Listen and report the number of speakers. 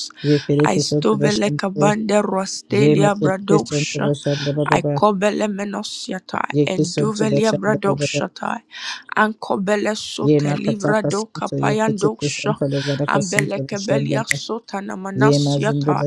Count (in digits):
2